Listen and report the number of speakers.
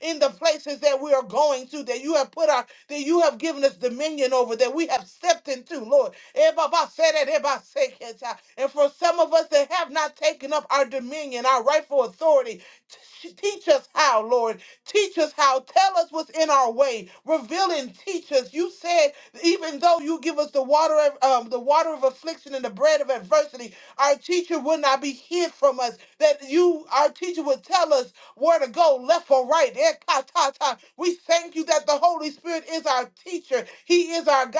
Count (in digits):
1